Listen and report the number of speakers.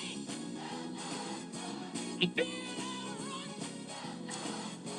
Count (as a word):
zero